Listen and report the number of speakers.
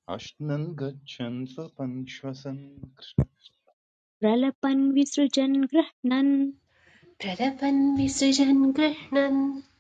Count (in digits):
3